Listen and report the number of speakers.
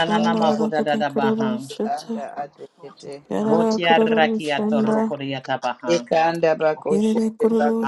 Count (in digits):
3